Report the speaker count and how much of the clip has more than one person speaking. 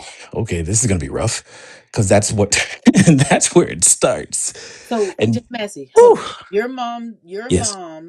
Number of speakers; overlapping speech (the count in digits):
2, about 8%